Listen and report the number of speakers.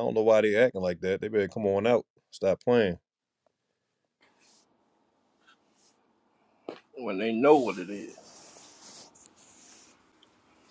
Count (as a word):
two